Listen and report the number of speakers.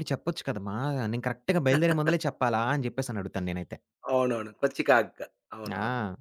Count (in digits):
2